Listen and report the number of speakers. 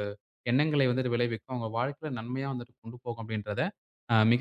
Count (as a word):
one